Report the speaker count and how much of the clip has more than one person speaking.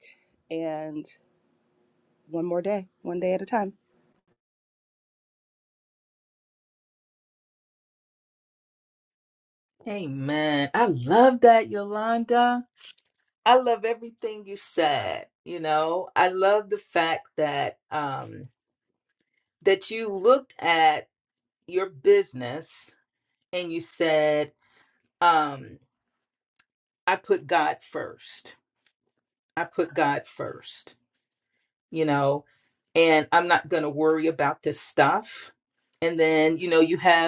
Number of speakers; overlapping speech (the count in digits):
2, no overlap